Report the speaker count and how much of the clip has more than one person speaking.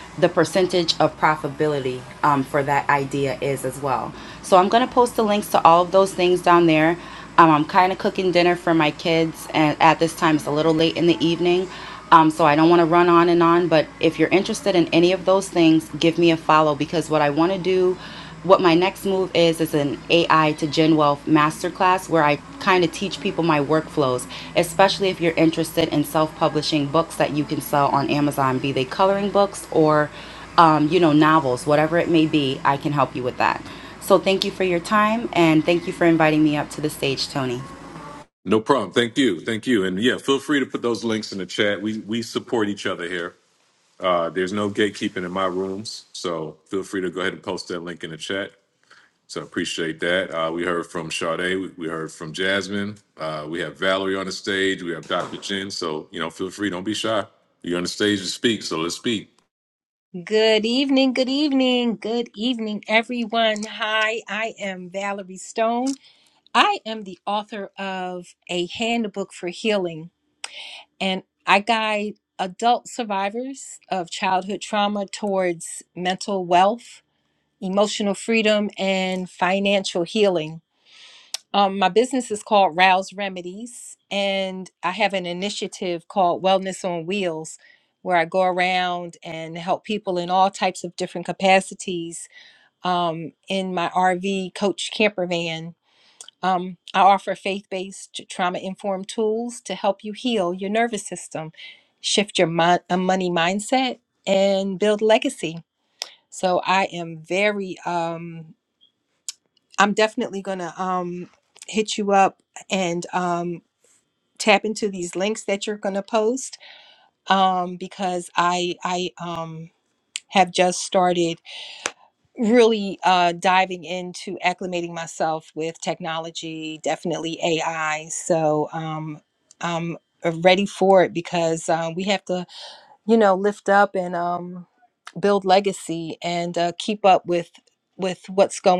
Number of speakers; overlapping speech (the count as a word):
three, no overlap